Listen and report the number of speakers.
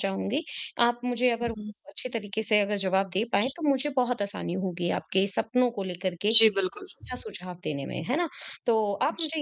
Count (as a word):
two